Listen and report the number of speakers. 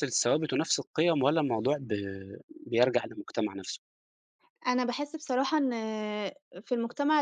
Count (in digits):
2